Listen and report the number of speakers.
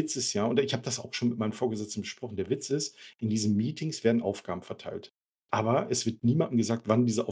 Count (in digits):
1